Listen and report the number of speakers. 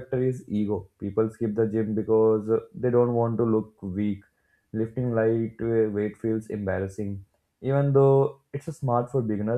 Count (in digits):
1